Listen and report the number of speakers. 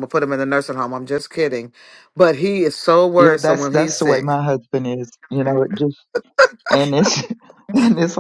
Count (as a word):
two